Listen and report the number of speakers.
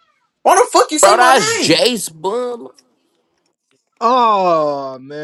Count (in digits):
3